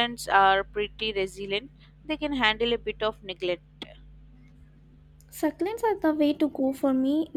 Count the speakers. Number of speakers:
2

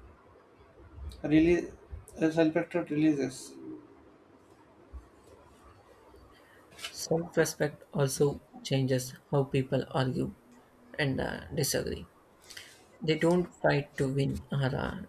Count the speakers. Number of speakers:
2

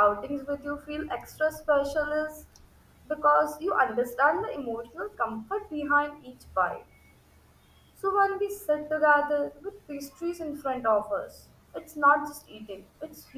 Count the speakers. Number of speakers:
1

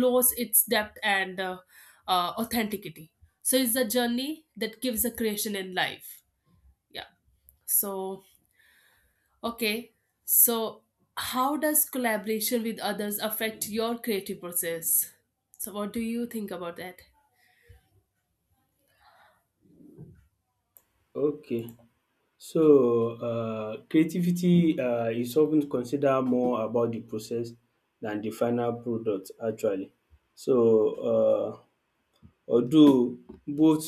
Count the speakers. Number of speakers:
2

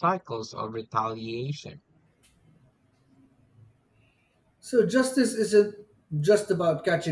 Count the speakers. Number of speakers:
2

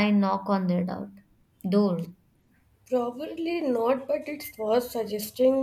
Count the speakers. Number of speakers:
2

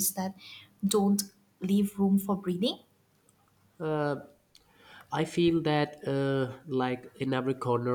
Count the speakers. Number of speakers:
2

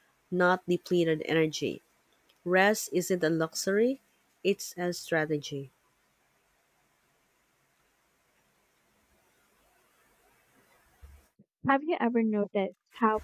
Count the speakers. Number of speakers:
2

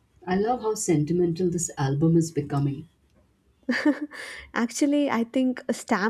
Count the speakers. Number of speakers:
2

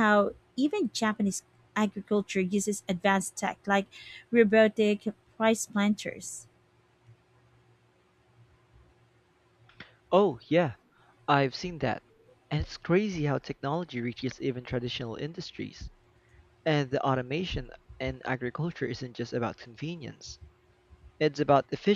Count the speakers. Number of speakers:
2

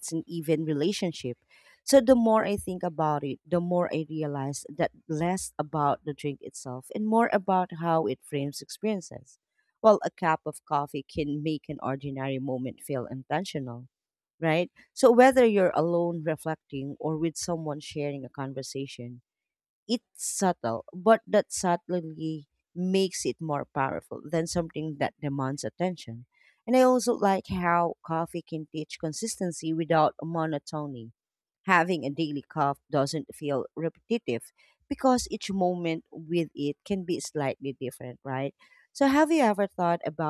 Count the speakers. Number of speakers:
1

